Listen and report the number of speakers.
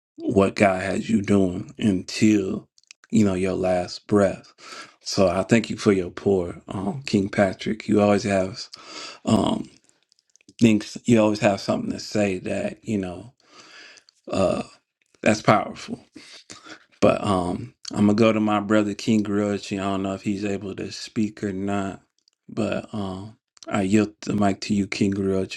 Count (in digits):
1